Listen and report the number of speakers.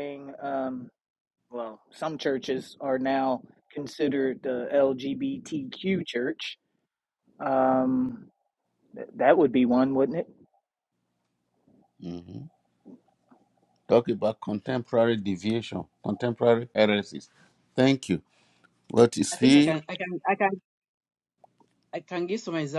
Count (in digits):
3